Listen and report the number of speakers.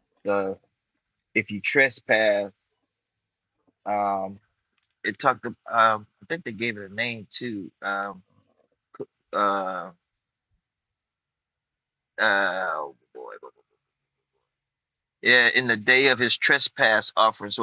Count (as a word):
one